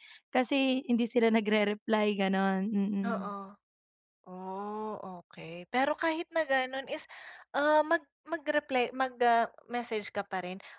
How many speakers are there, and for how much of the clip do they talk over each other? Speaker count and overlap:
2, about 2%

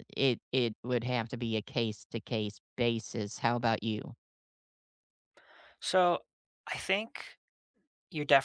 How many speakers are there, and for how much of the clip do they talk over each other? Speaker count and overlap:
2, no overlap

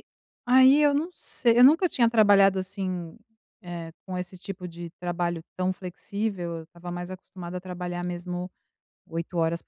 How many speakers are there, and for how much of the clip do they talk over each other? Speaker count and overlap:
1, no overlap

